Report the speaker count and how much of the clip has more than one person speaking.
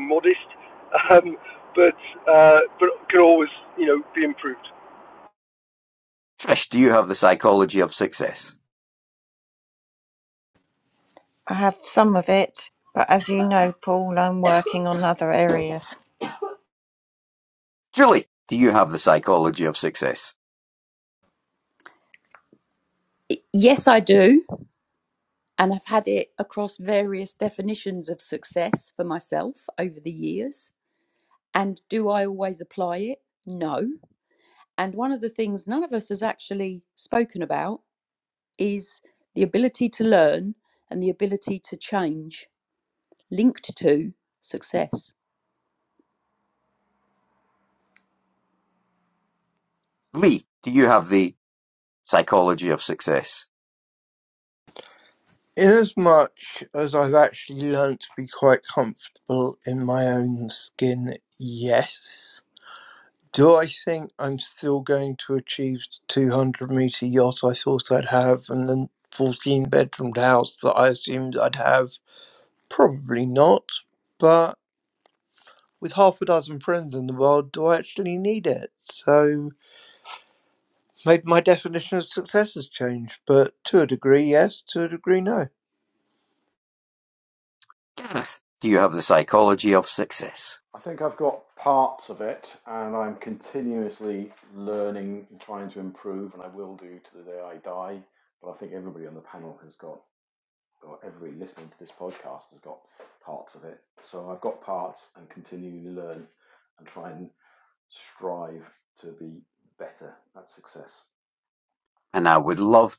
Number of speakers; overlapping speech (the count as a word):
six, no overlap